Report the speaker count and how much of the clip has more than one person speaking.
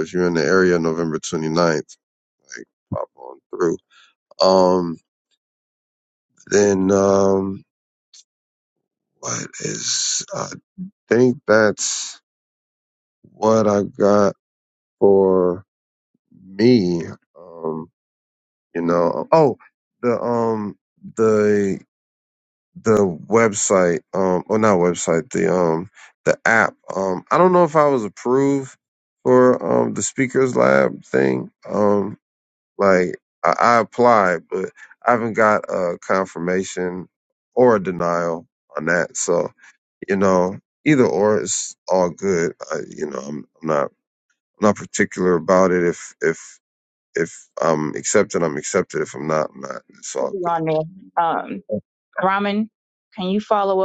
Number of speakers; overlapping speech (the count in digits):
2, under 1%